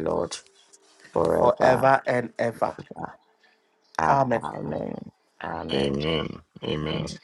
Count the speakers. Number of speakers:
three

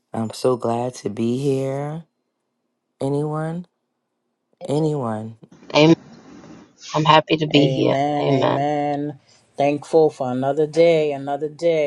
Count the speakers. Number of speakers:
three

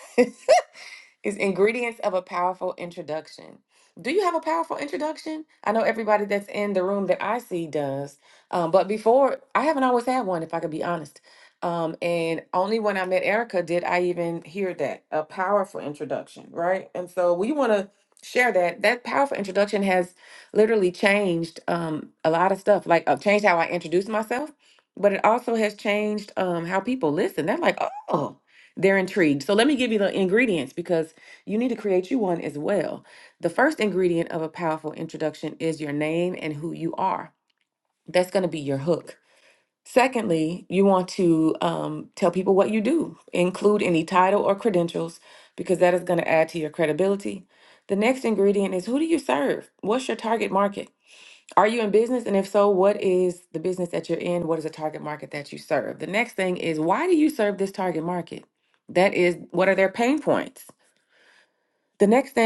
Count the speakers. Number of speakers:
one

